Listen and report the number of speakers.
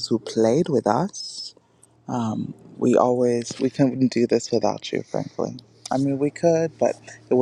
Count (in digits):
1